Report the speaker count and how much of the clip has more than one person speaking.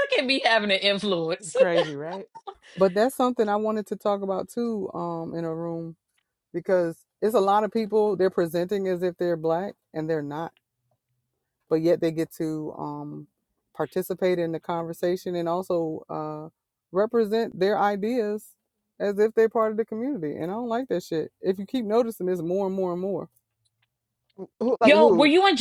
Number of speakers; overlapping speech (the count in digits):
3, about 2%